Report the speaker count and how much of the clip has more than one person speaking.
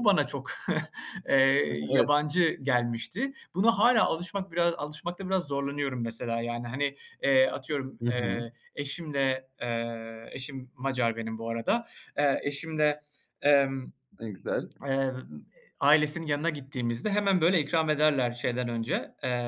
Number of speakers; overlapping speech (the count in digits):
2, about 4%